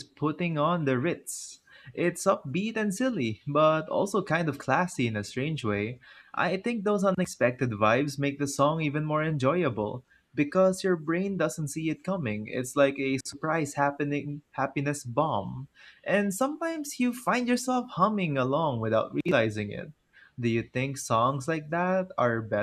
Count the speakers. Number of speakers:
1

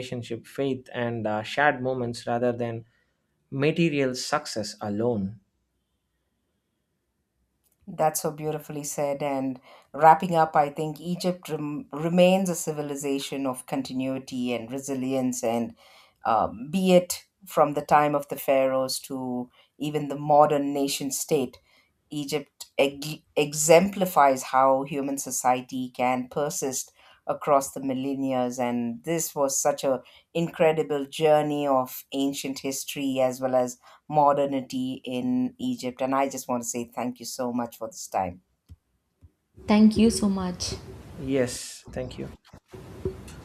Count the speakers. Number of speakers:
3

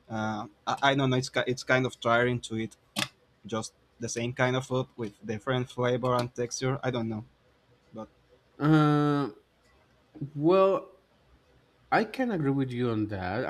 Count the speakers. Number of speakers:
2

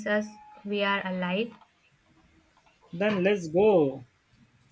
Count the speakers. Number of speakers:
2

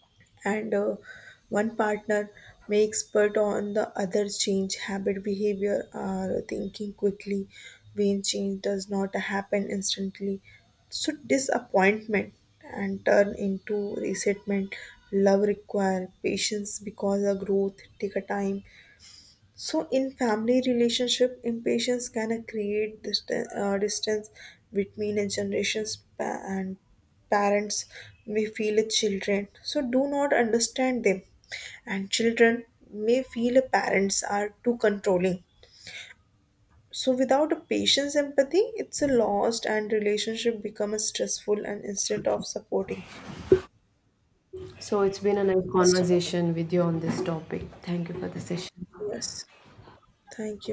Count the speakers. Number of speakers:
2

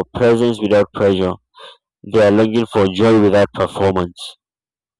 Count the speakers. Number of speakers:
1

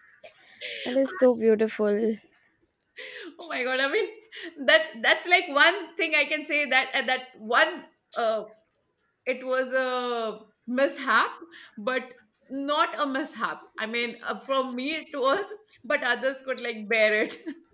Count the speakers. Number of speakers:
2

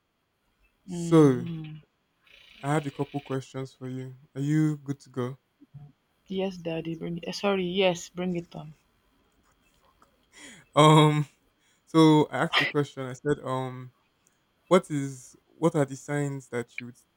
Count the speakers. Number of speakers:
2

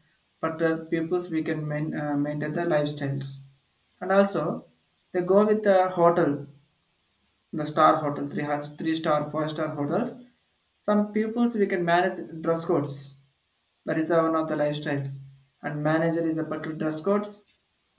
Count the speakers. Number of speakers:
1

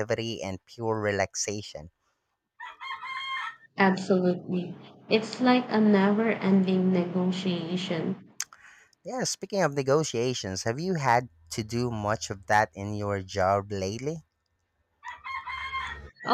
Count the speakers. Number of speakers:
2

